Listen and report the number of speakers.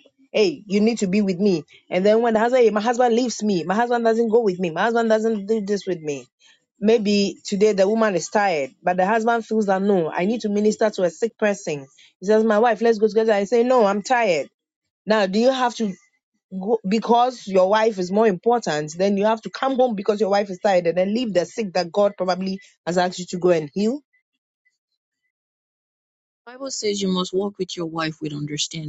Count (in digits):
2